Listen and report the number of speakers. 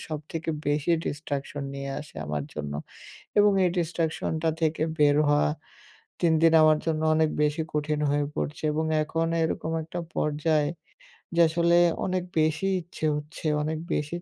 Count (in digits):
1